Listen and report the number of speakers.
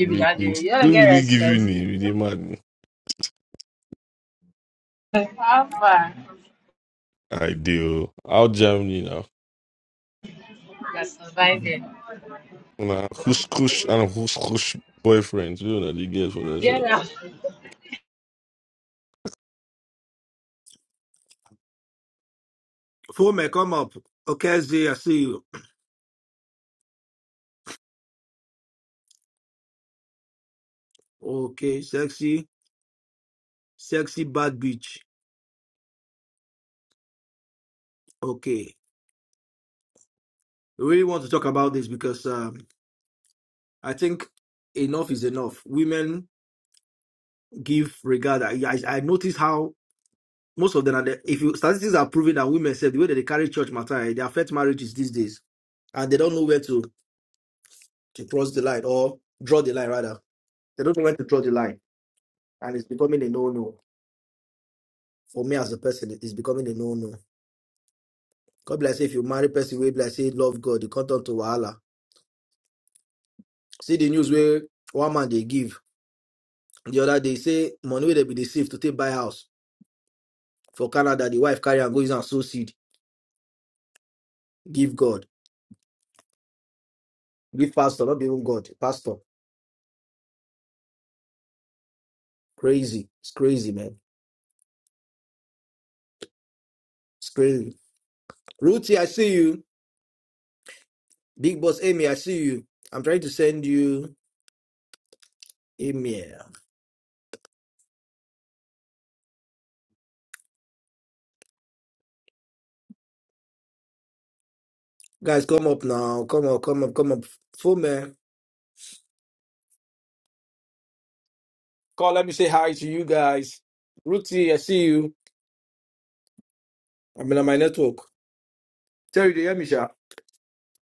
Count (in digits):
3